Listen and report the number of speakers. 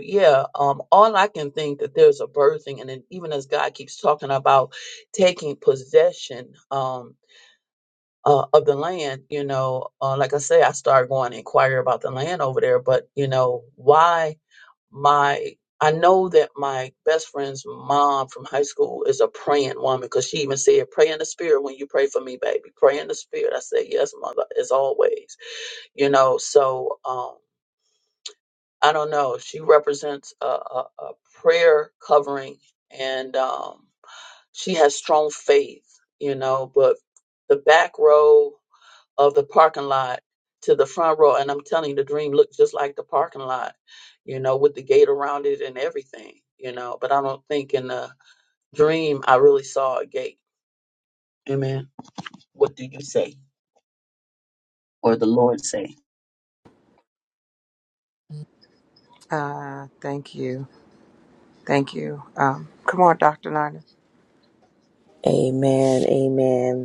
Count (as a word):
three